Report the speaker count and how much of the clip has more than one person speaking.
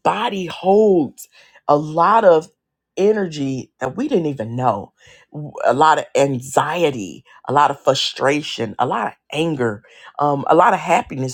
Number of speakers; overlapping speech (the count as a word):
one, no overlap